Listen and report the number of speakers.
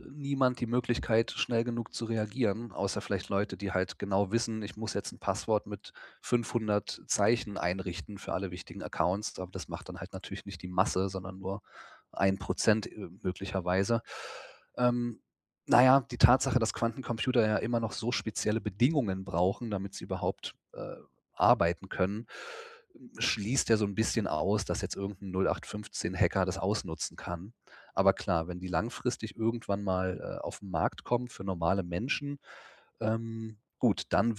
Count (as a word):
one